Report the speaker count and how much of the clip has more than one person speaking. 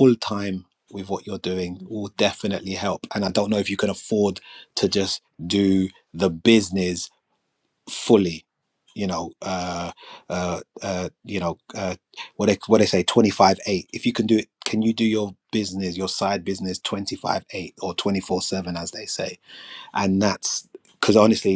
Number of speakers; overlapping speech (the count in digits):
1, no overlap